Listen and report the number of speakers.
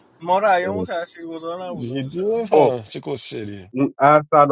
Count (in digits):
3